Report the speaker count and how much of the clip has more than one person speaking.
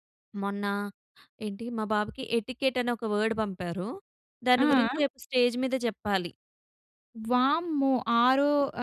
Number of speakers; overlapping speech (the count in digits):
2, about 5%